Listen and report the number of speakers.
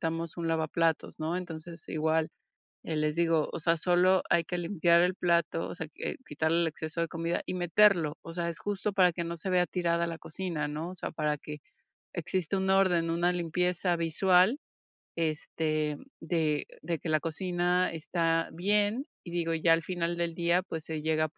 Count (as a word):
one